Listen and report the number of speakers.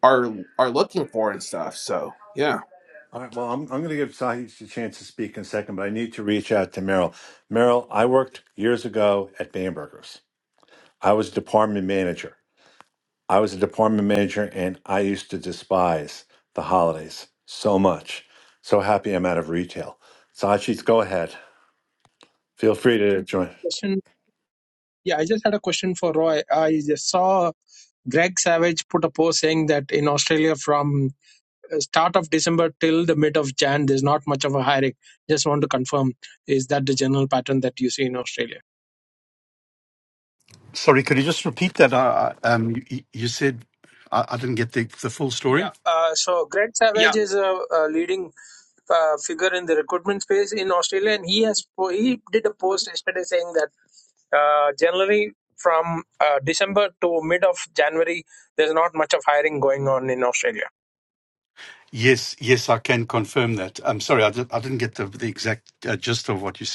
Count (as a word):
four